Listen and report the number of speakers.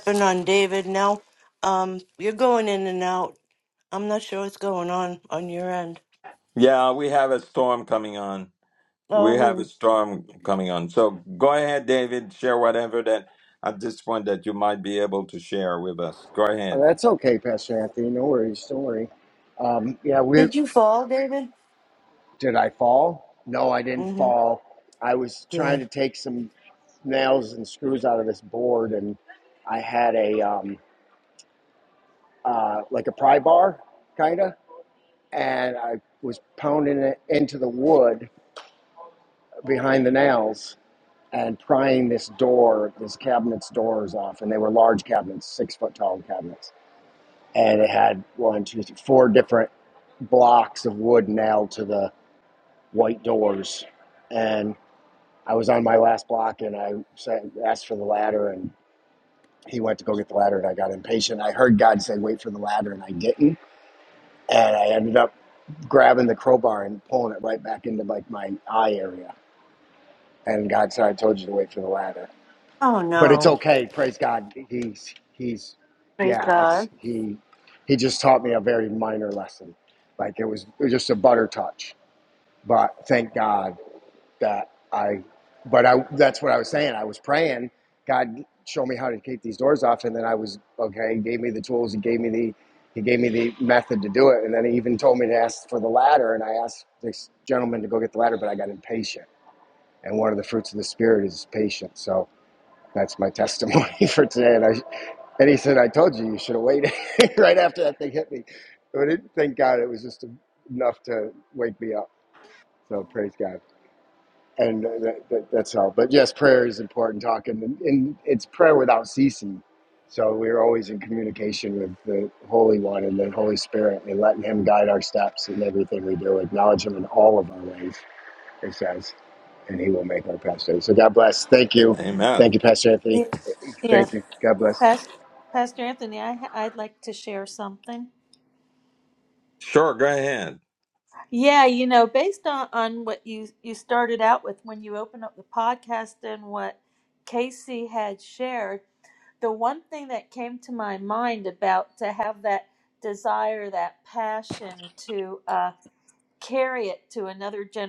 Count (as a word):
four